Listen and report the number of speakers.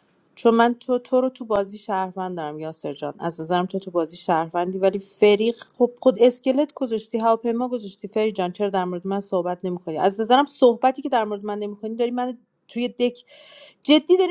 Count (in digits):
1